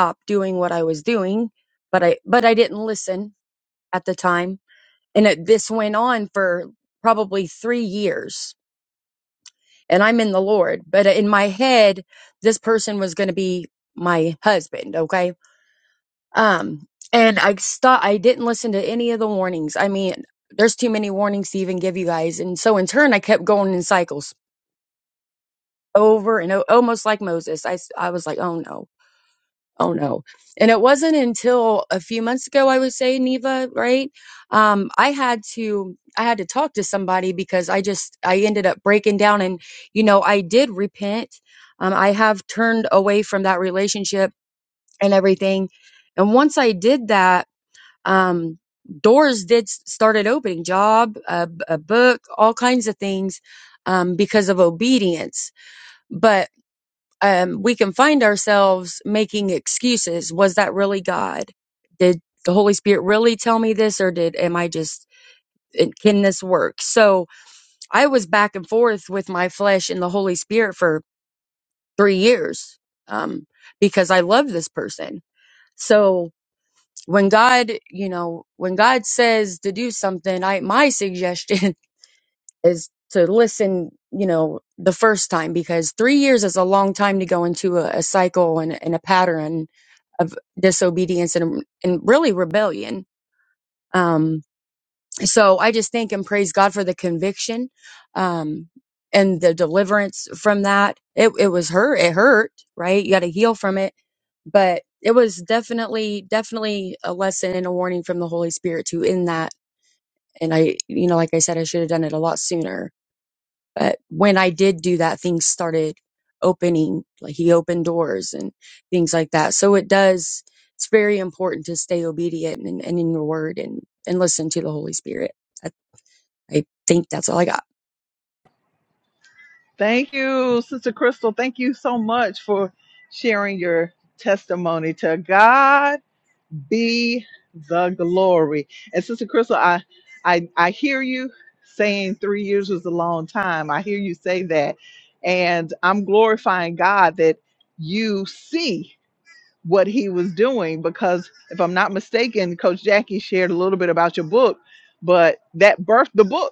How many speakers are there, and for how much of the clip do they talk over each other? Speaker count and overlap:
two, no overlap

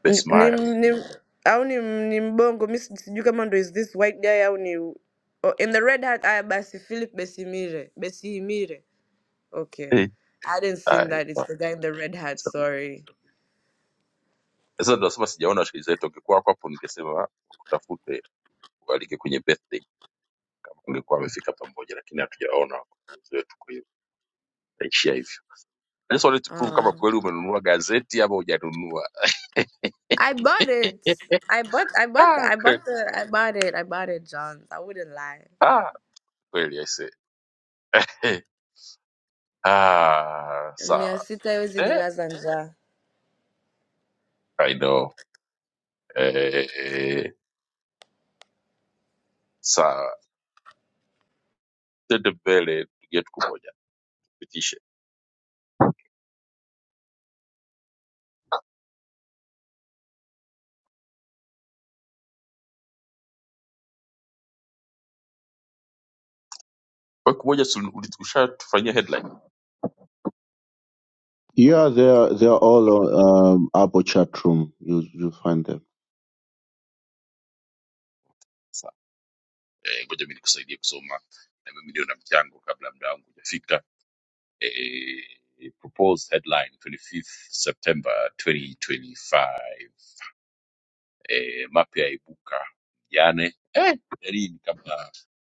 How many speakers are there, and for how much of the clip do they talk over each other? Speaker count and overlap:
three, about 4%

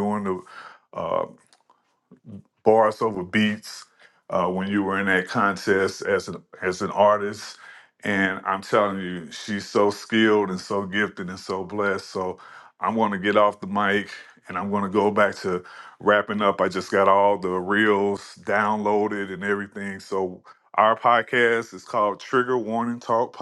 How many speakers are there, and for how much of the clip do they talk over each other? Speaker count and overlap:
one, no overlap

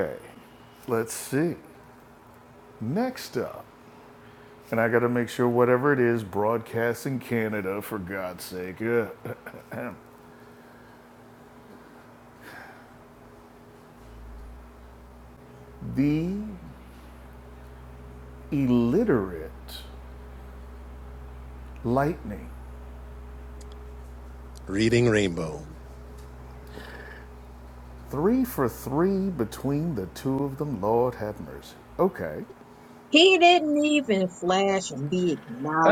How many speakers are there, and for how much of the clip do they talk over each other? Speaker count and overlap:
three, under 1%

